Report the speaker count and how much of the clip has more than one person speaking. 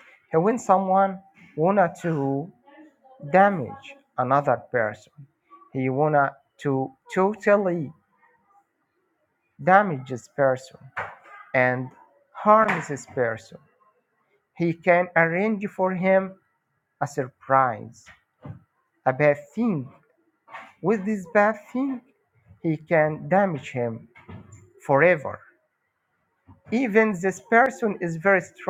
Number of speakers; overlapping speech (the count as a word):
one, no overlap